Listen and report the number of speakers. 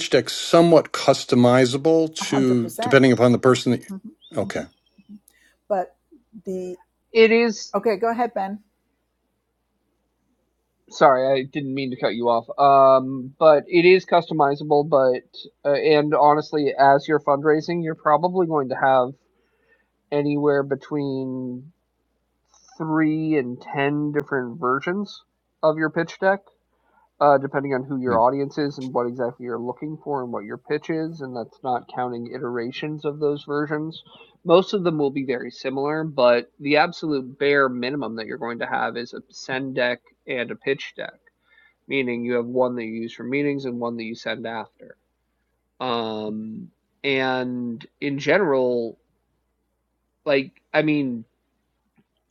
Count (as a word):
three